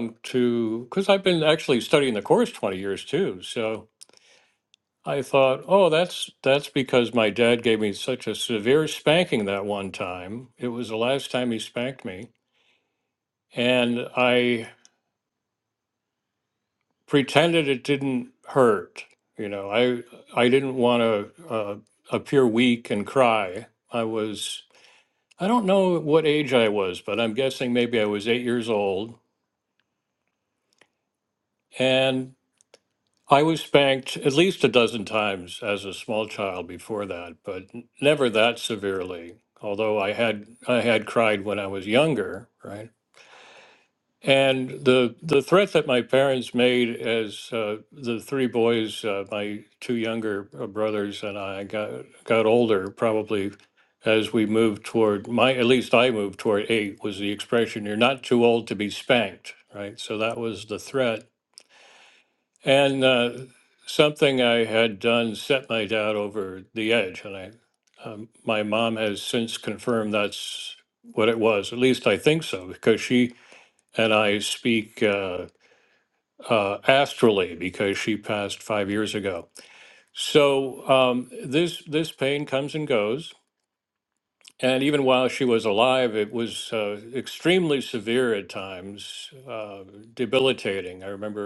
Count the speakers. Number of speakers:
one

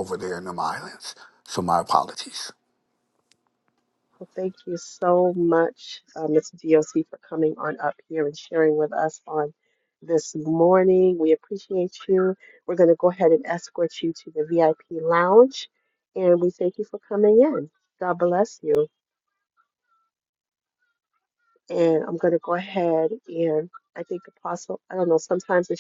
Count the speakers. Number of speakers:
two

